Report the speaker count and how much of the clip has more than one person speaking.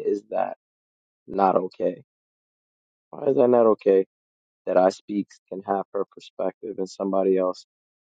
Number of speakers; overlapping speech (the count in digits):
1, no overlap